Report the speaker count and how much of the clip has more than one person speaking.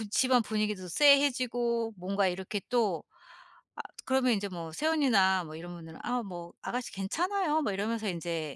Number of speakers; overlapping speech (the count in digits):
1, no overlap